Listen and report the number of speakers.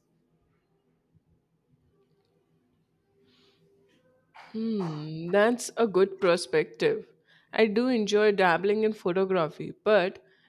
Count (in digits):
1